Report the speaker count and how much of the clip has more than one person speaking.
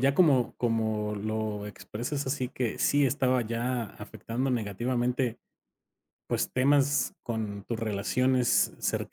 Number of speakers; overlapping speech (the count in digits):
1, no overlap